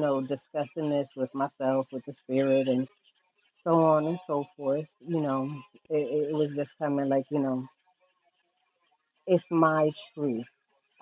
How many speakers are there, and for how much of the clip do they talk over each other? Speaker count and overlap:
one, no overlap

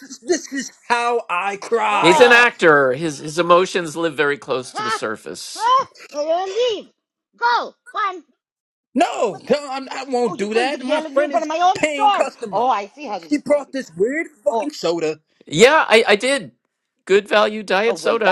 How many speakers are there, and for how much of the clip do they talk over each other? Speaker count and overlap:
three, about 23%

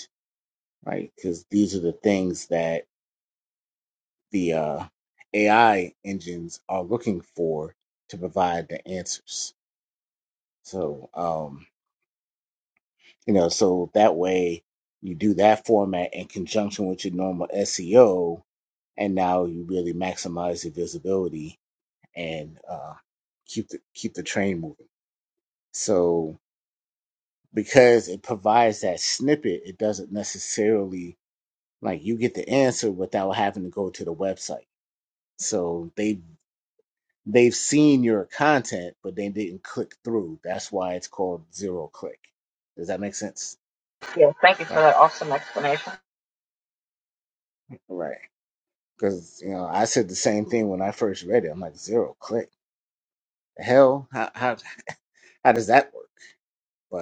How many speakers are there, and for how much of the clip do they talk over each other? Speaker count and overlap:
two, under 1%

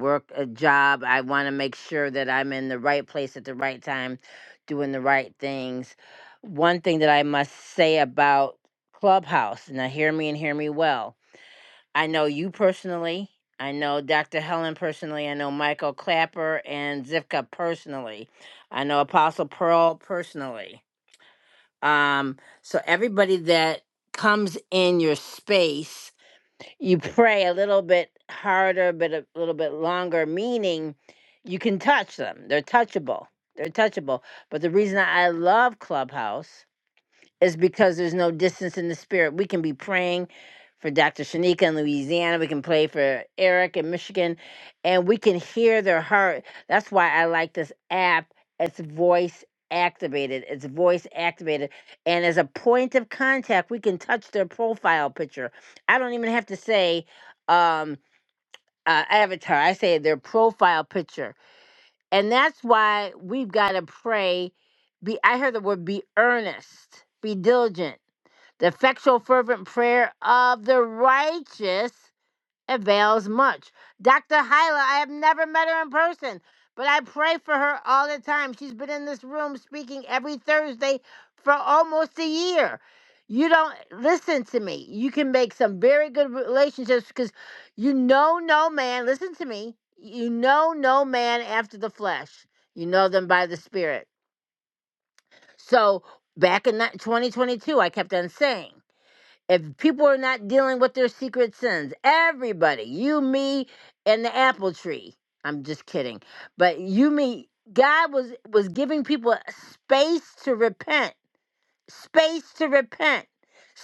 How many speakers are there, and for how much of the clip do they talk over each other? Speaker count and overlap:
one, no overlap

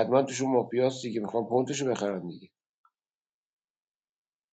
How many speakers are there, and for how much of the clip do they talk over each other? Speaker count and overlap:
one, no overlap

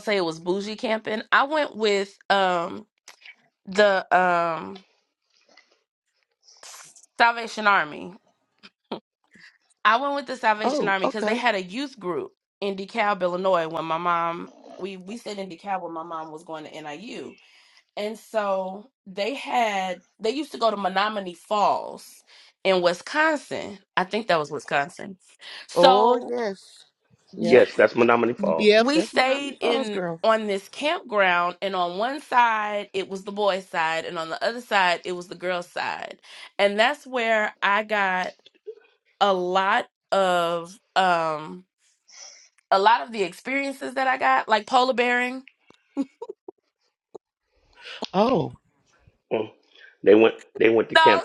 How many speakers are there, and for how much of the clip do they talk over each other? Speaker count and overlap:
three, about 7%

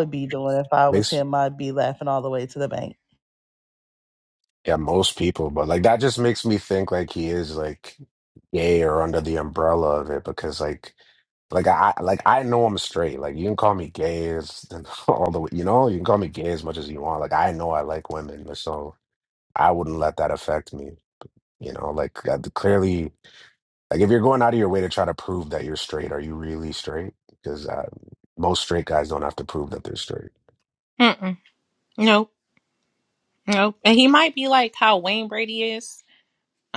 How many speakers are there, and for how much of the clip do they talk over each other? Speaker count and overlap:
three, about 1%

